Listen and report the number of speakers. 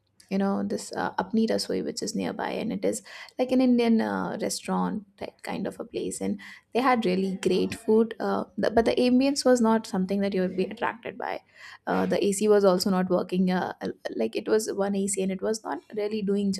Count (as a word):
one